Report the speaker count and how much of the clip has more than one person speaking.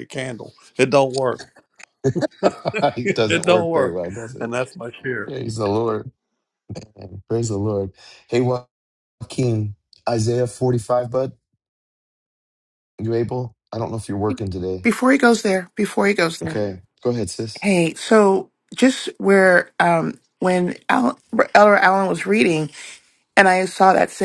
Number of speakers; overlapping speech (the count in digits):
3, about 5%